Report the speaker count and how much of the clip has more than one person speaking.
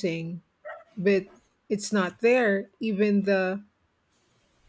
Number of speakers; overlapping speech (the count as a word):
one, no overlap